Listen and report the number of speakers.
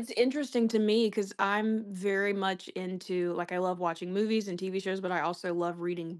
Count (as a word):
one